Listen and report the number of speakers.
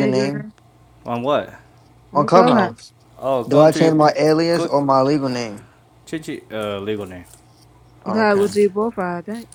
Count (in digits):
3